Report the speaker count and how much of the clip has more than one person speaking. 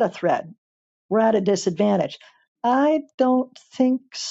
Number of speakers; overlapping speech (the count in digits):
1, no overlap